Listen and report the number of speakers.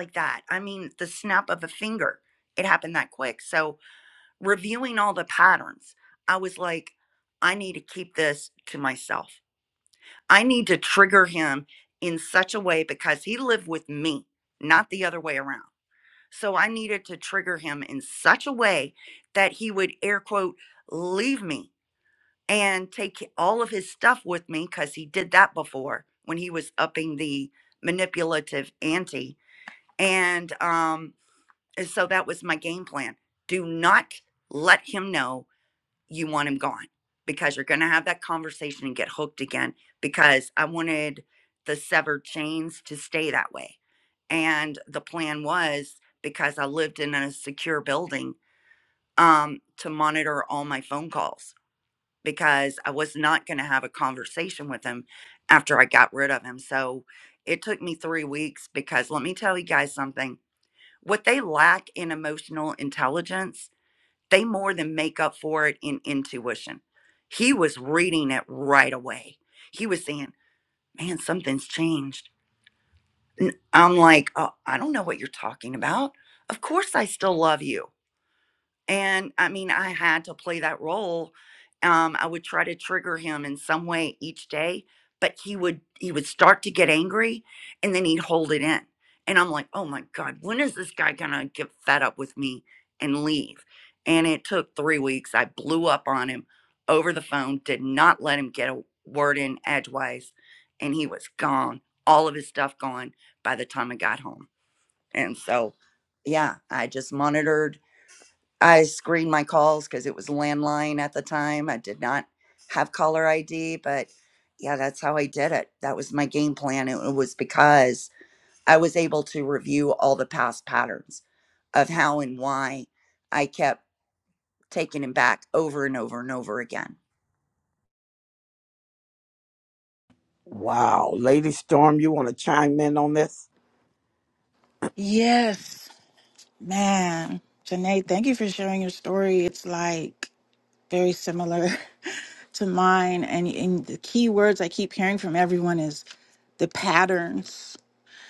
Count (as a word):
three